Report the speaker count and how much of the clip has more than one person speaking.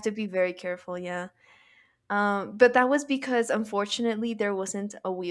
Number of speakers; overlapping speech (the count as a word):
one, no overlap